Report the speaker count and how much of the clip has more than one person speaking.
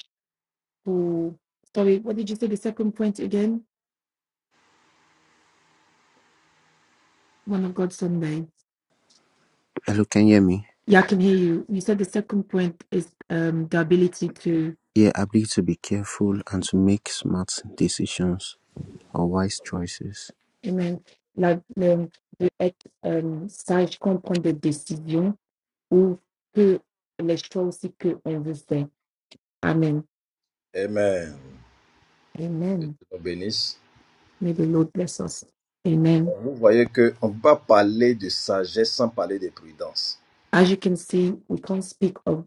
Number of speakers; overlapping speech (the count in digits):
3, under 1%